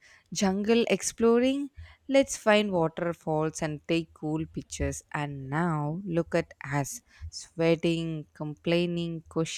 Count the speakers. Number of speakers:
1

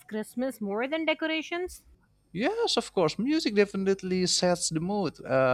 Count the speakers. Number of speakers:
2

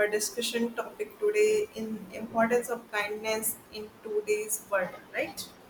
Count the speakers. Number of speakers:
1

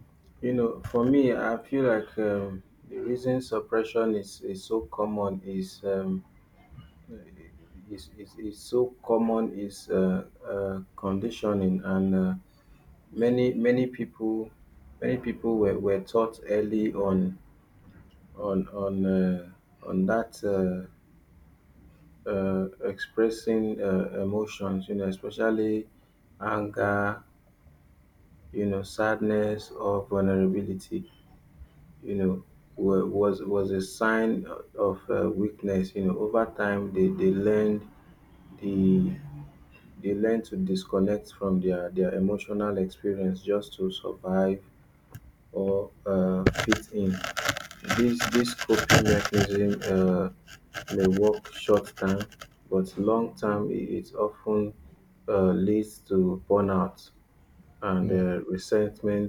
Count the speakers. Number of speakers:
1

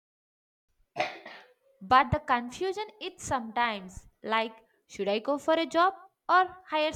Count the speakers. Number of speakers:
1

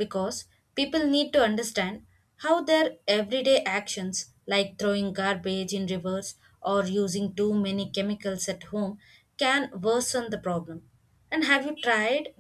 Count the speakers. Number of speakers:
1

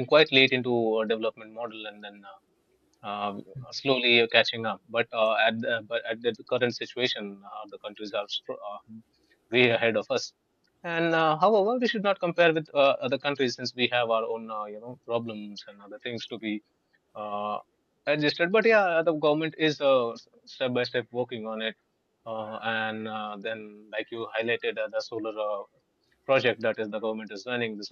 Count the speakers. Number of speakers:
1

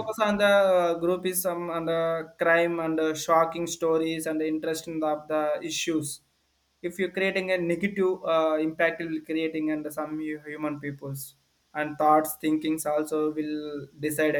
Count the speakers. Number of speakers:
1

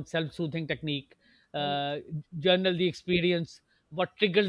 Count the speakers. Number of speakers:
1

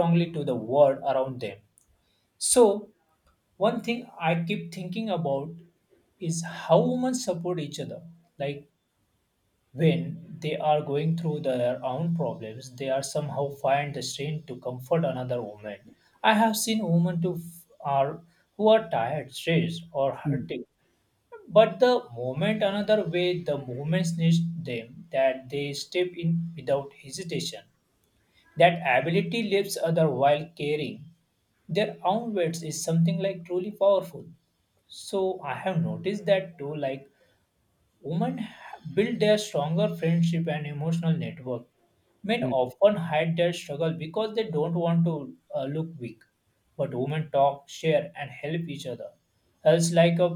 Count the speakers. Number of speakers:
1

